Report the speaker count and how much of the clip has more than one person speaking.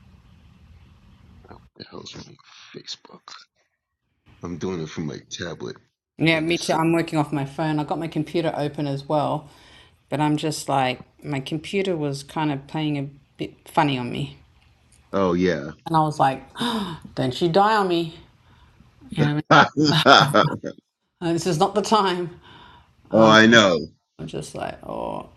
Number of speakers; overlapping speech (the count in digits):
2, about 2%